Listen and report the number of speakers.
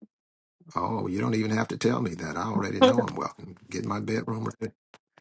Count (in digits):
1